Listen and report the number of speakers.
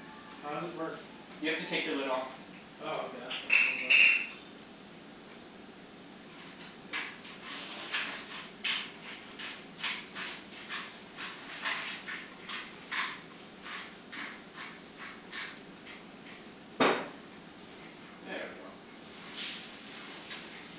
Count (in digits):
2